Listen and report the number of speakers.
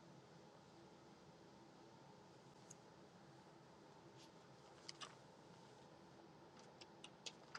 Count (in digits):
0